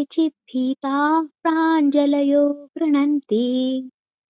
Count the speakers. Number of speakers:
1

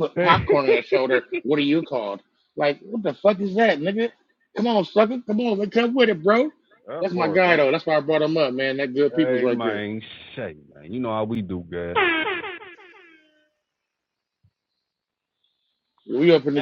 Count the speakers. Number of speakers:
2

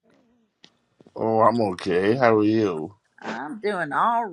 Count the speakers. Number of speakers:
2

